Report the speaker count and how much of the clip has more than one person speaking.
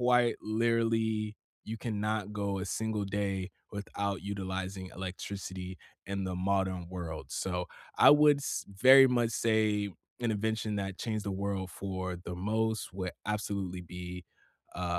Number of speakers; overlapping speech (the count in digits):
1, no overlap